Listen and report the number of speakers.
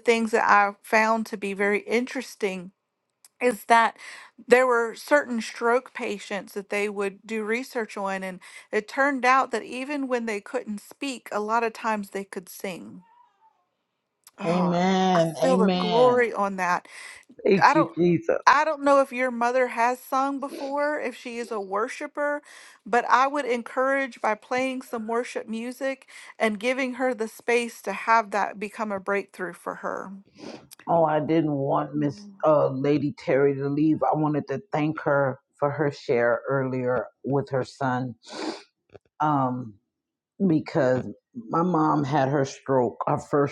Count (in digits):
2